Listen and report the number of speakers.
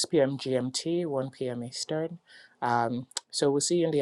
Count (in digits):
1